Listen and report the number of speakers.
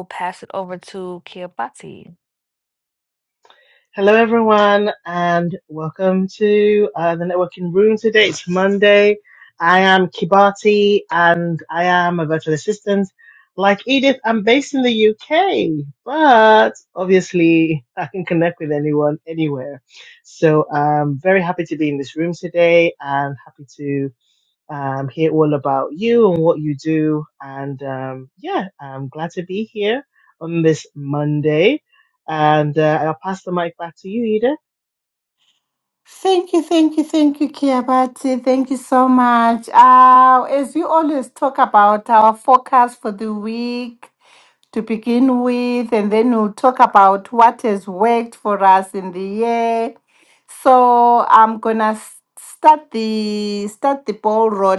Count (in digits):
3